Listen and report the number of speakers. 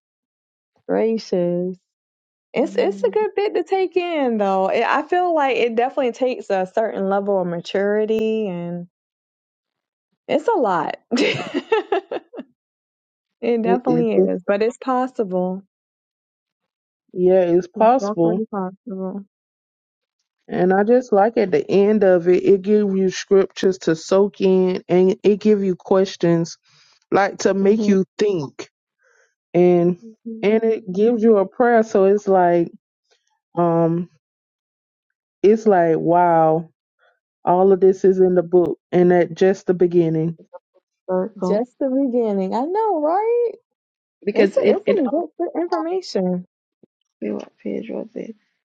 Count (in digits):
3